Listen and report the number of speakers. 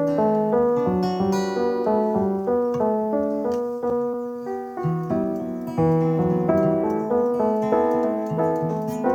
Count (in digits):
0